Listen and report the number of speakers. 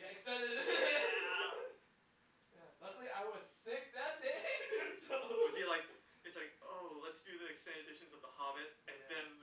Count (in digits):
2